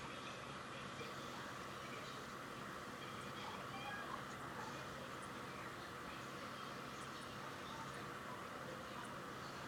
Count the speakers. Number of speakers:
zero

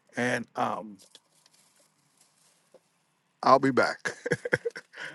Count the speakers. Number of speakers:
one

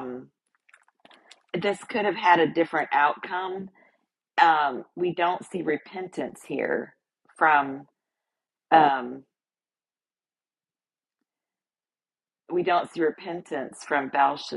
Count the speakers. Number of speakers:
one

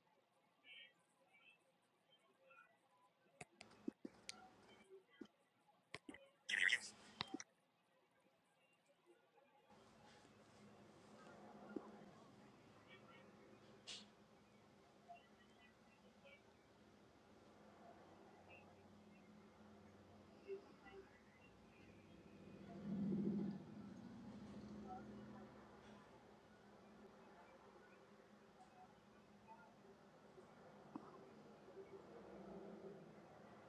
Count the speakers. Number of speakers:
zero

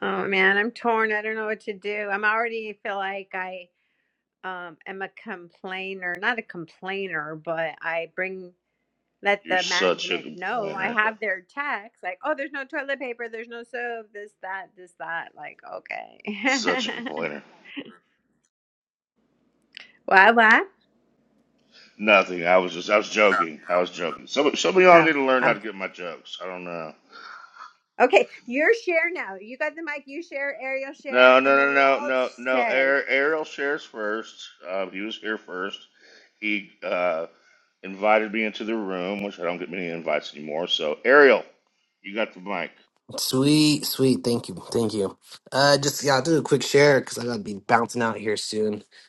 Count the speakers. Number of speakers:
three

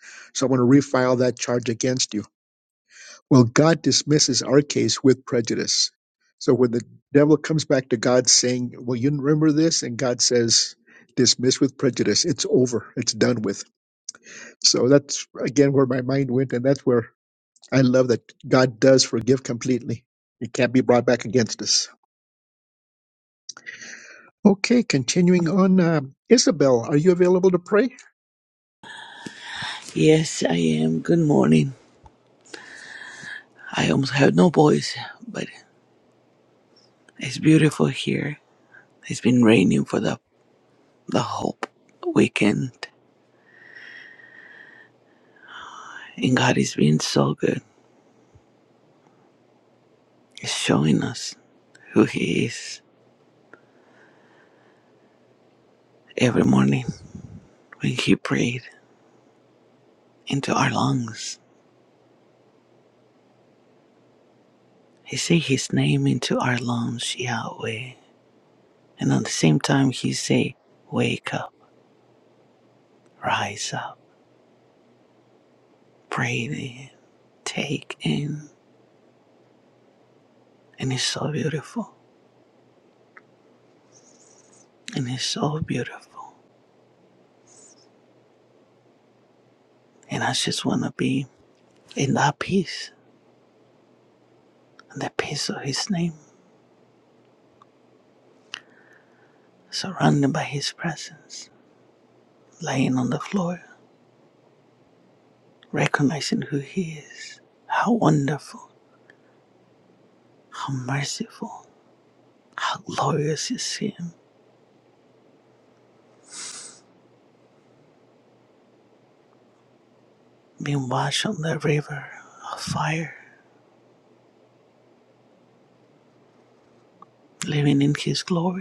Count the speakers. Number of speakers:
two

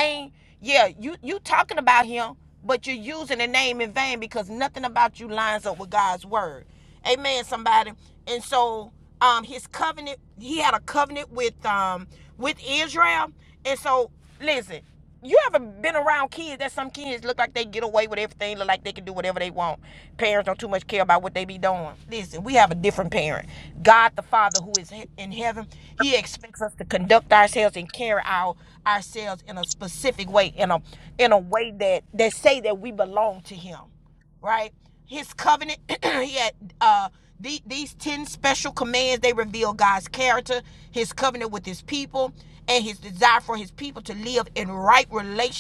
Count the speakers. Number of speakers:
one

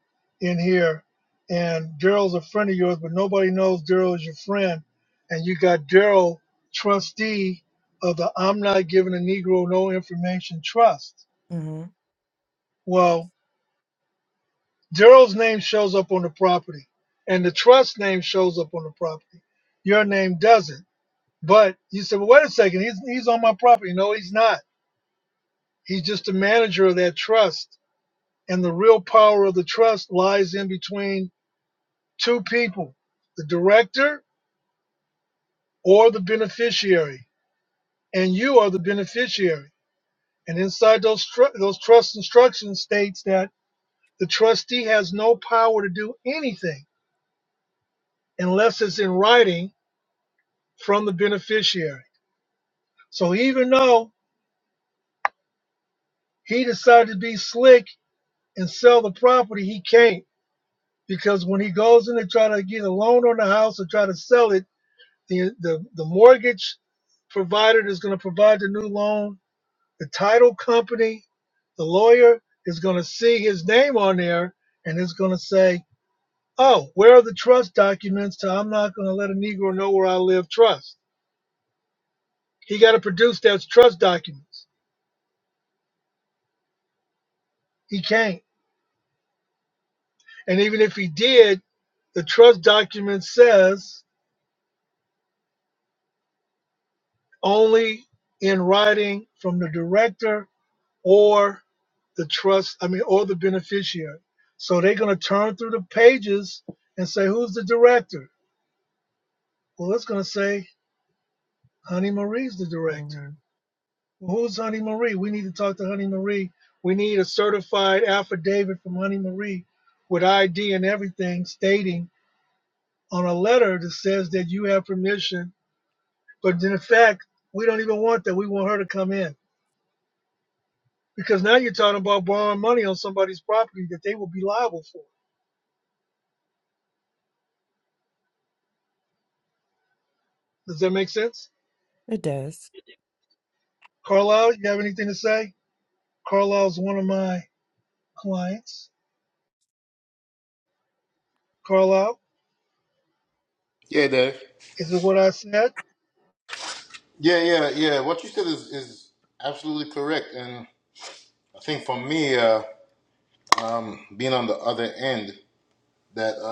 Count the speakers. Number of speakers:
three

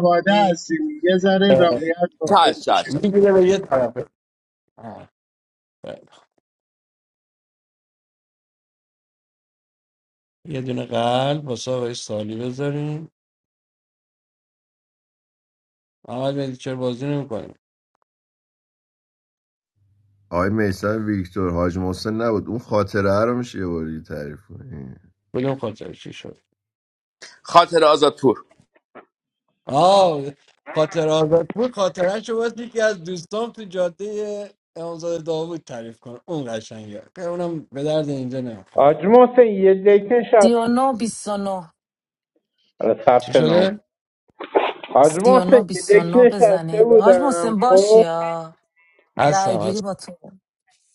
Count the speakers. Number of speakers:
six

